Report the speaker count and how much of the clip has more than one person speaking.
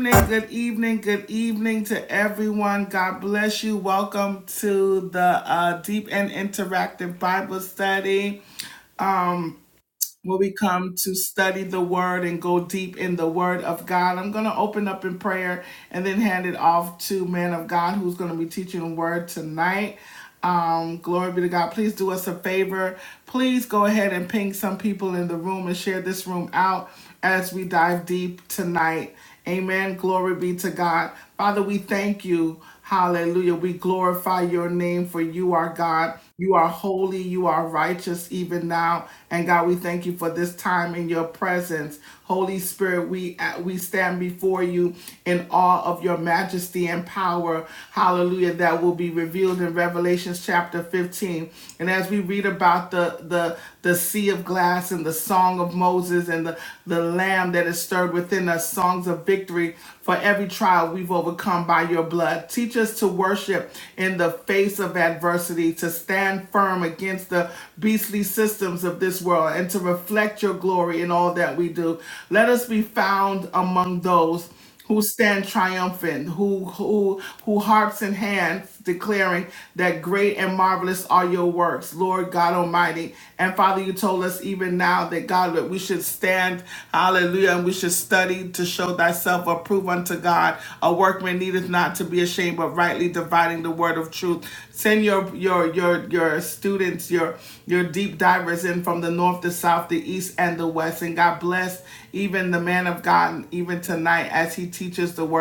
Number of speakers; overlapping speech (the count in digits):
1, no overlap